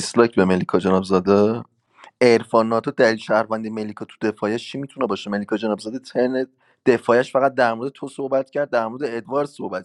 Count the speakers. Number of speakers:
one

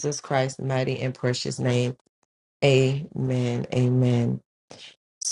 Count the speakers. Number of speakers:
one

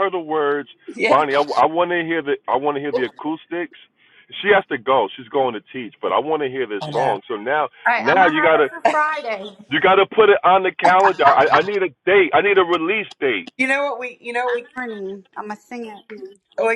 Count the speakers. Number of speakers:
three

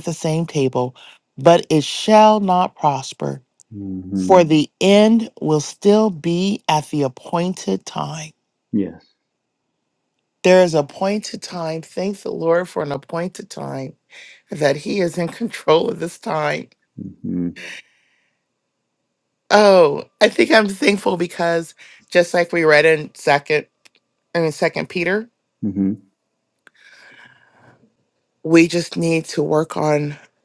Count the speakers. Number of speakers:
two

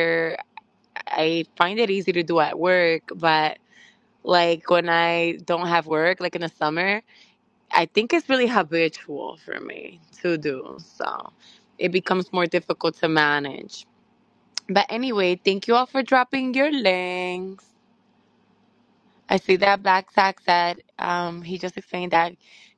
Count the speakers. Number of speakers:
one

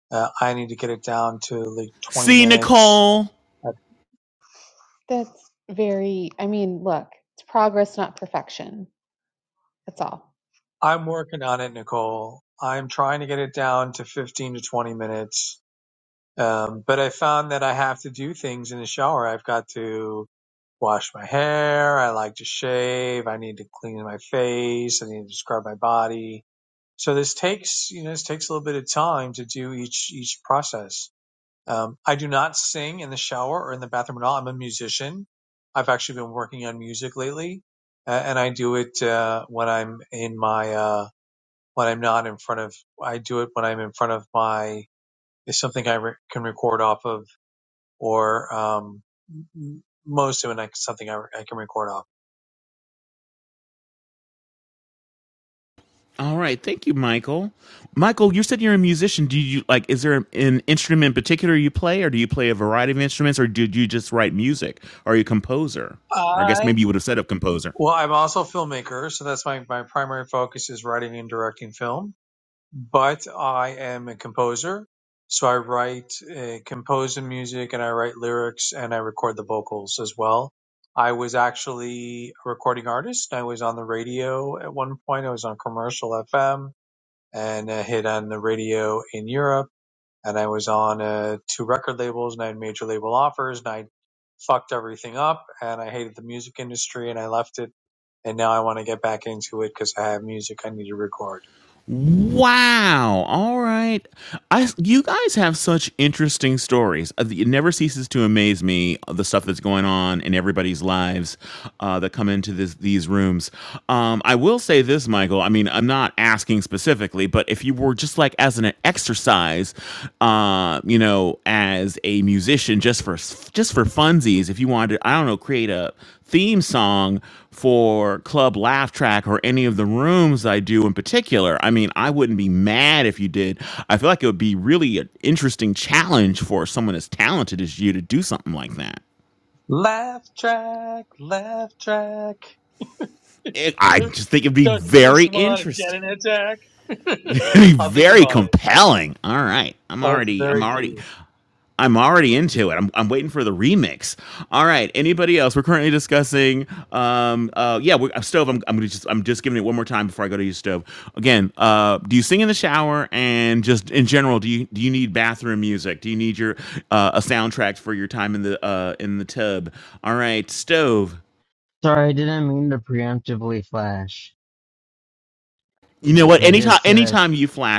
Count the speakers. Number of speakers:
four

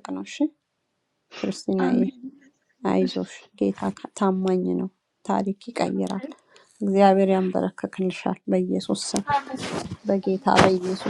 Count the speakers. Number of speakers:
two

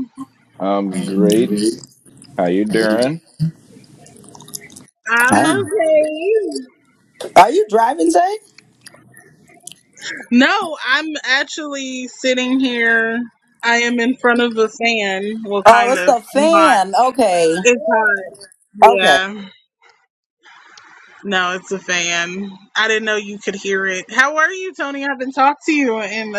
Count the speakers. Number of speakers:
three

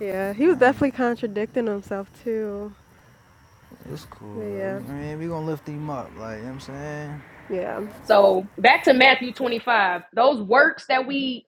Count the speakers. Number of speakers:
three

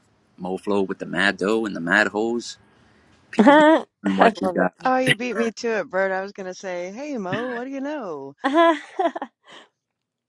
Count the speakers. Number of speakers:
three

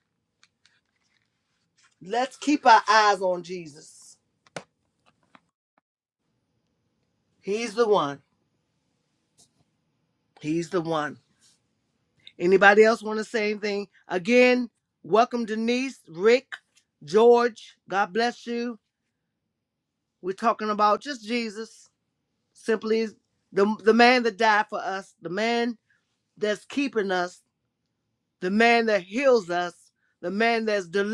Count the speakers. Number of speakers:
one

